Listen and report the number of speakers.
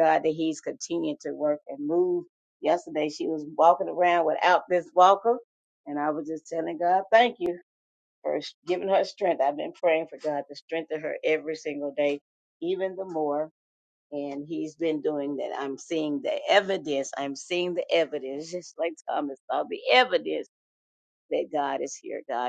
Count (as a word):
one